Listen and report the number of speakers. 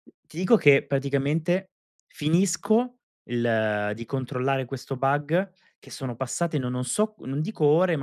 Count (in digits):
1